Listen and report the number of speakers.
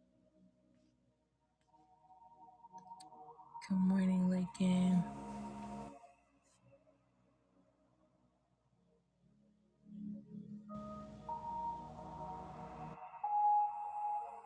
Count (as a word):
one